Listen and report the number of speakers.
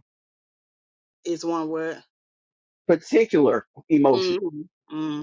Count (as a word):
two